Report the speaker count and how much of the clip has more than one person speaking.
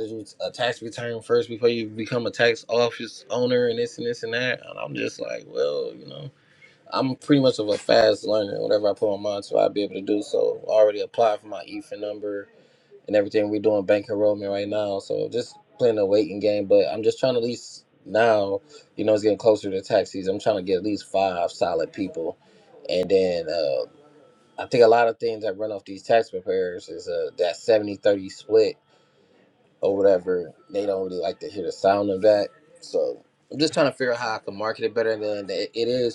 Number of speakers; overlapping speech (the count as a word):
one, no overlap